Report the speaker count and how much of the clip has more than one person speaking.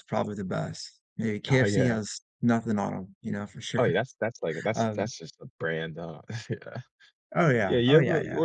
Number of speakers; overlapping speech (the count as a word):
two, about 22%